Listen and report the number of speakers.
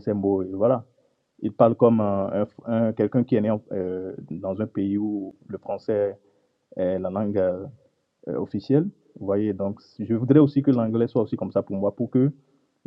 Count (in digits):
1